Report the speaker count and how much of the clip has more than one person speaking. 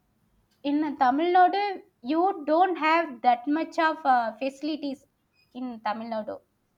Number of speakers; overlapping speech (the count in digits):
1, no overlap